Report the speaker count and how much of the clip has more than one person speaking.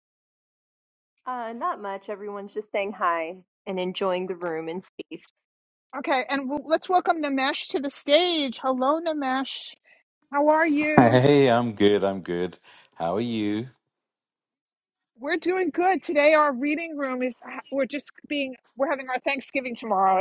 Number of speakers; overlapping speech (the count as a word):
three, about 1%